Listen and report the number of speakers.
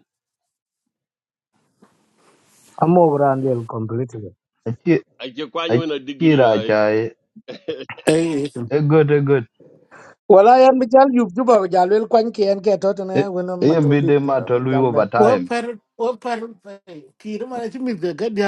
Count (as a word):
four